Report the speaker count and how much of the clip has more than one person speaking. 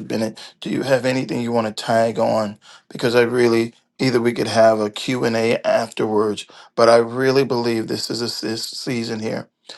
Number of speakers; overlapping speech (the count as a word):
one, no overlap